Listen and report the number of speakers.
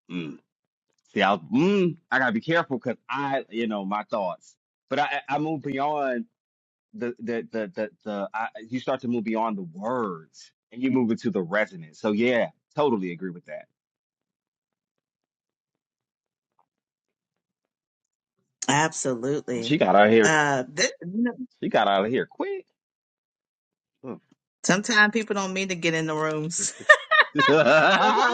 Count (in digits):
2